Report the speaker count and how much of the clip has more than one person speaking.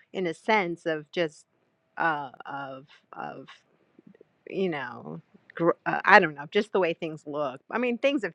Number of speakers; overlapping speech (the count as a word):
one, no overlap